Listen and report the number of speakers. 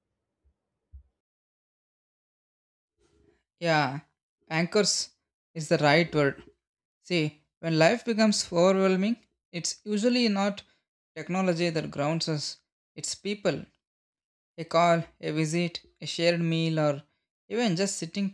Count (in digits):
1